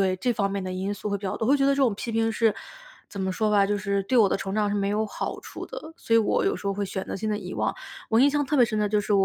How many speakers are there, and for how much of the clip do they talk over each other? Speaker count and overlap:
1, no overlap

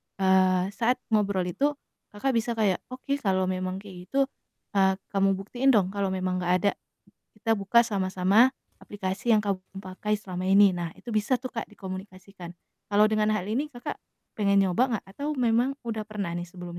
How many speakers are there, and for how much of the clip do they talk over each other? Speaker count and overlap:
1, no overlap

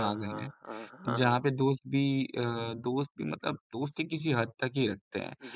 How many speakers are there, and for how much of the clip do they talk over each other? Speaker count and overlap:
2, about 14%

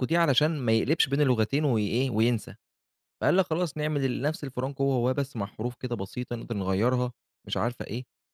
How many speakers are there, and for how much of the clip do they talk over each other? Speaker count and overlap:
1, no overlap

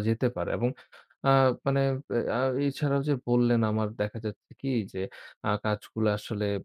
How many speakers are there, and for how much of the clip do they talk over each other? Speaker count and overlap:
1, no overlap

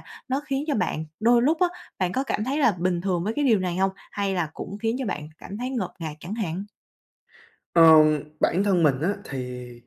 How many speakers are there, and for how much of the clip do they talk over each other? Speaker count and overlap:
2, no overlap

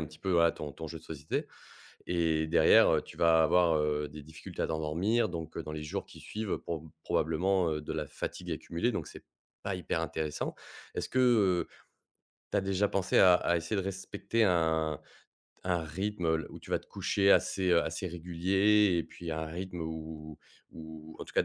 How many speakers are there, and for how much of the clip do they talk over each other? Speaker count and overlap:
1, no overlap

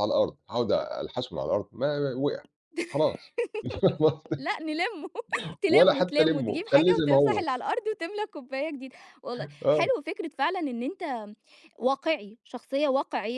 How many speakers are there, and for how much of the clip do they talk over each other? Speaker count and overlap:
2, about 15%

